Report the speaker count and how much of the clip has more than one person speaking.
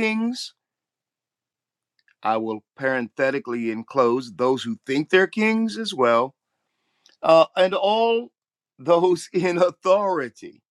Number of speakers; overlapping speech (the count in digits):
1, no overlap